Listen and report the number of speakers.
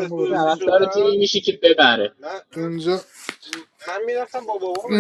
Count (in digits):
3